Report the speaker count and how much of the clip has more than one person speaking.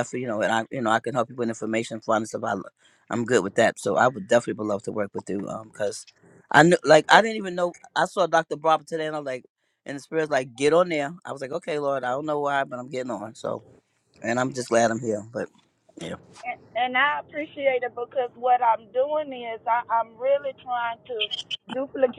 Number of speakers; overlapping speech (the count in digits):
2, no overlap